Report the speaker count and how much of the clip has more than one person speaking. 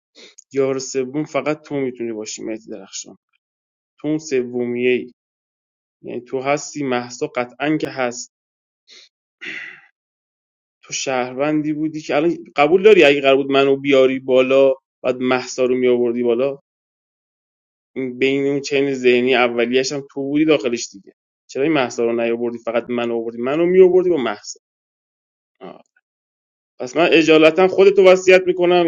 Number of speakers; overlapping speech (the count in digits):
1, no overlap